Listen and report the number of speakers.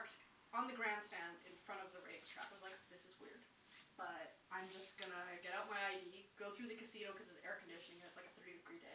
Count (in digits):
1